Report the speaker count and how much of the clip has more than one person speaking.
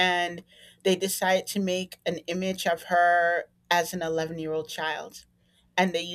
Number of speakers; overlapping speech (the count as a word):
one, no overlap